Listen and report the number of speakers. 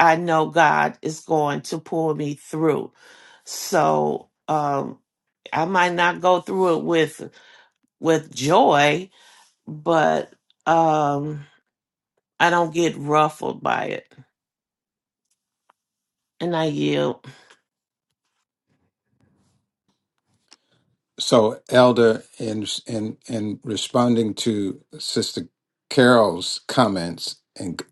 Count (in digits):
2